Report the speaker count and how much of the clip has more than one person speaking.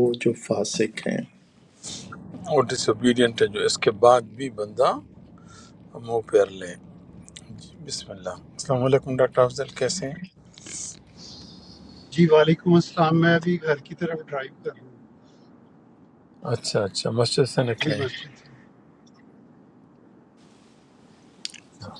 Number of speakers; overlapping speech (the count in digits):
3, about 1%